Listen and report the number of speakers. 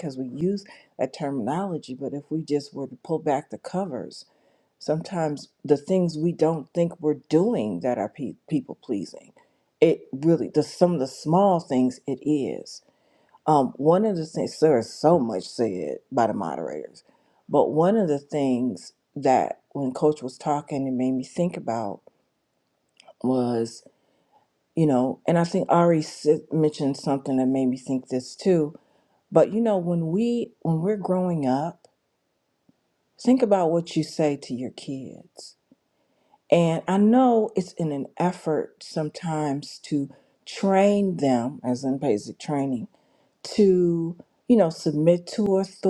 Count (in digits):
1